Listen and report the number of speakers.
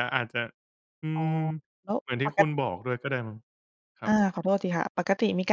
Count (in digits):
2